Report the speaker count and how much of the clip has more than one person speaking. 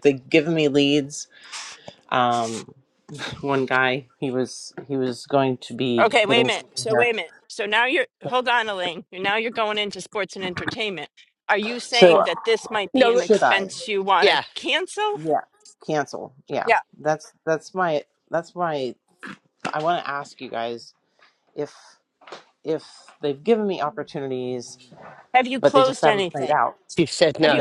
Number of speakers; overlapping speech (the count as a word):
three, about 14%